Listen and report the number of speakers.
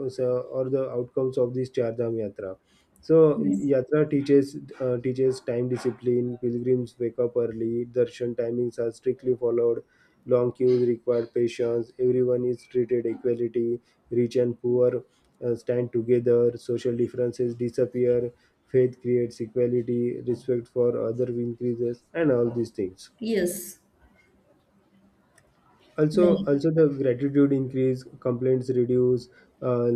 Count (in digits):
2